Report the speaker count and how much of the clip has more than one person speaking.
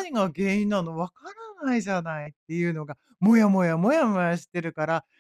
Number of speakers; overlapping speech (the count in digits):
1, no overlap